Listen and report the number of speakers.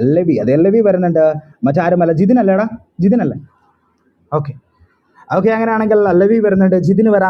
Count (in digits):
1